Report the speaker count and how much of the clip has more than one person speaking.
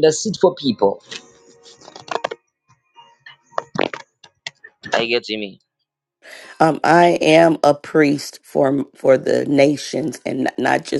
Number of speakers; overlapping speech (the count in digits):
2, no overlap